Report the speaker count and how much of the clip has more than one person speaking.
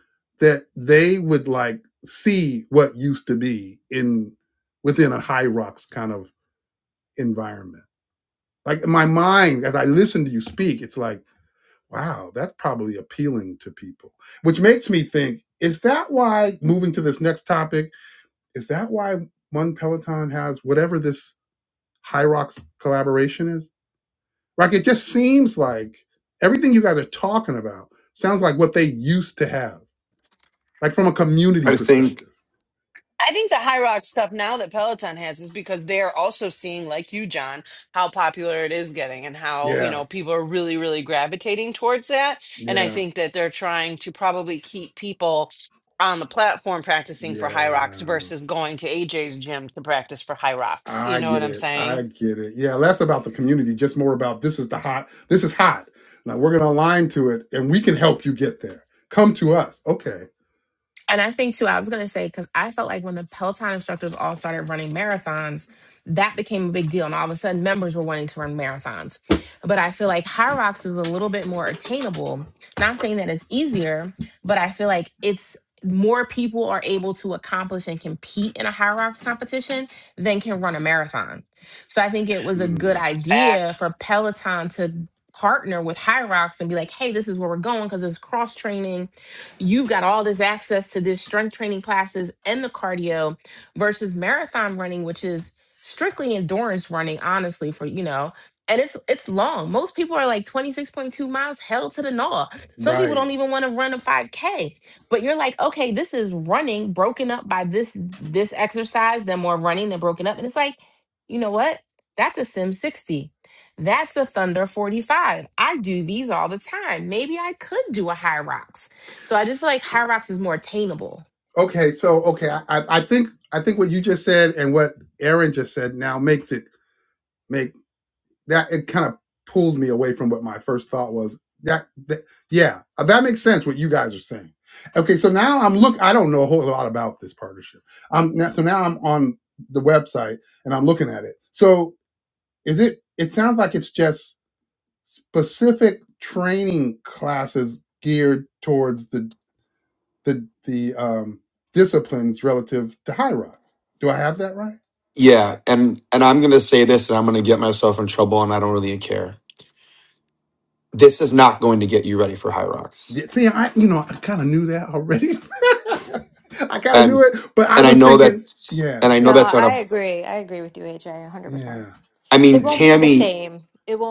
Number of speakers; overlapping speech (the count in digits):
5, about 4%